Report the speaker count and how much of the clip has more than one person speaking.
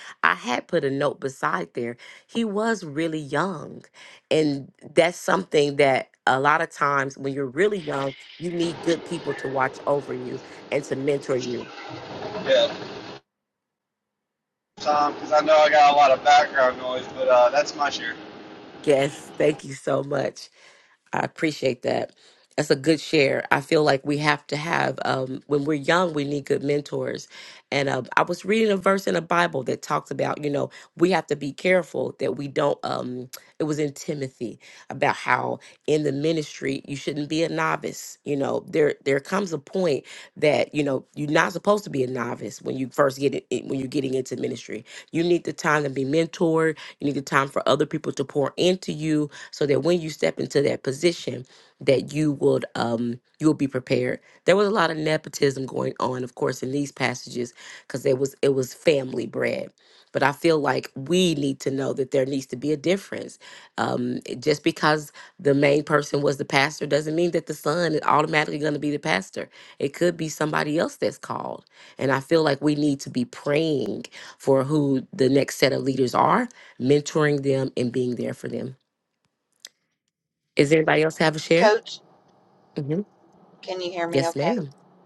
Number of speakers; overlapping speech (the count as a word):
three, about 1%